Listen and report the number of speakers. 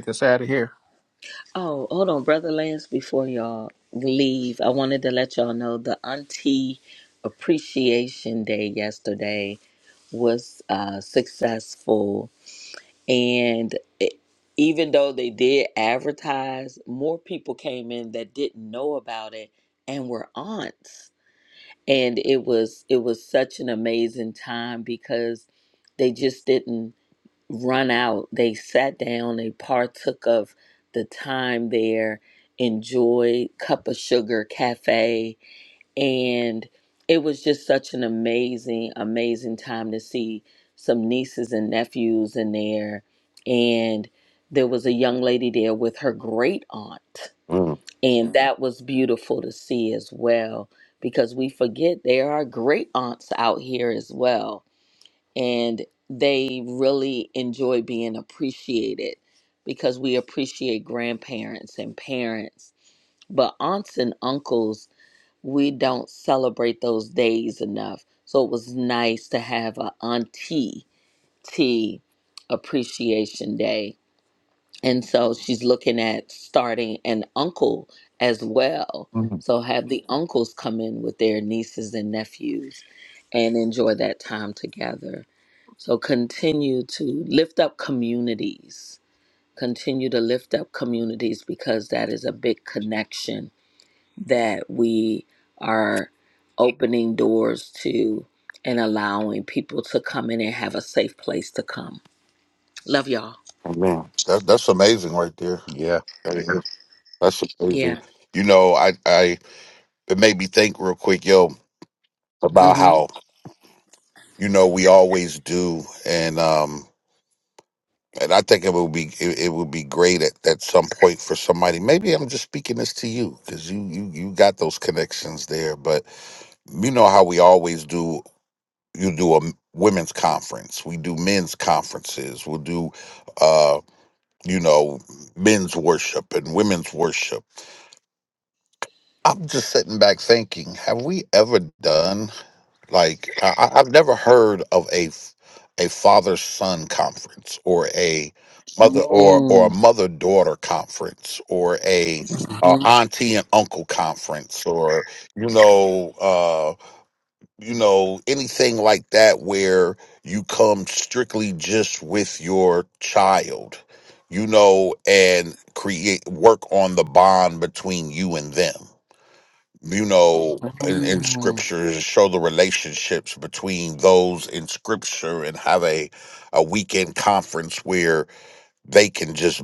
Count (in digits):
3